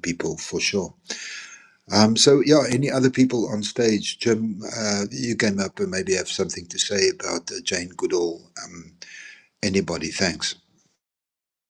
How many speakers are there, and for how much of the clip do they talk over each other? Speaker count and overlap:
1, no overlap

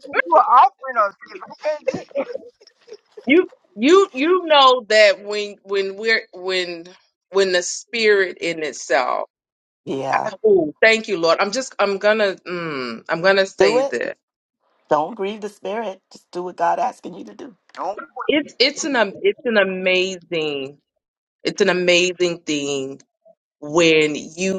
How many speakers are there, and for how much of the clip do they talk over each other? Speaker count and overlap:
3, about 2%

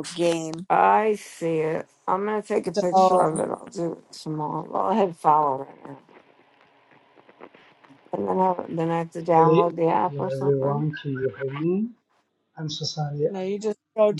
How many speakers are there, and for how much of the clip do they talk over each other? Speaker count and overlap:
3, about 13%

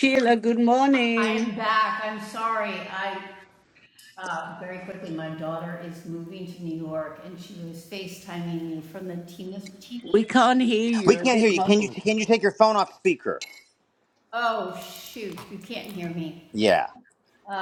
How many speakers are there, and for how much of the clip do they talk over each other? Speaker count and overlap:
3, about 8%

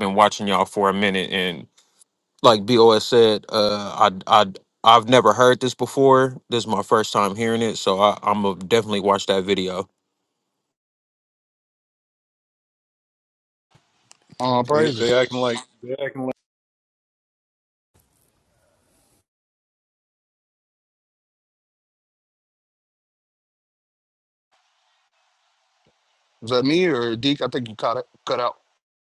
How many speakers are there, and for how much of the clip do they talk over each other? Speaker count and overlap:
3, about 2%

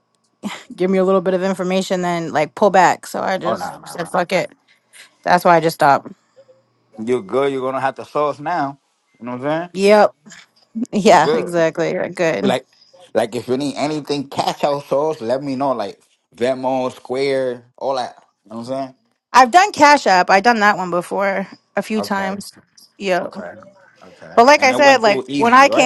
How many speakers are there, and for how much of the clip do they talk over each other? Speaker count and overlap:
2, about 12%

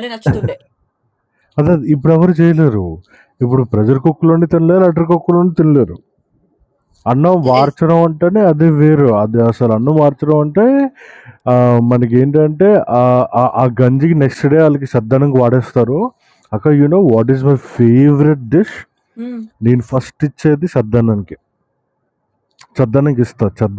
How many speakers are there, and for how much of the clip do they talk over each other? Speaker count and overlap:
2, about 1%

